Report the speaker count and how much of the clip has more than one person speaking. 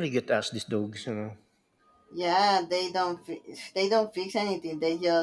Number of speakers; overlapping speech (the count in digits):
2, no overlap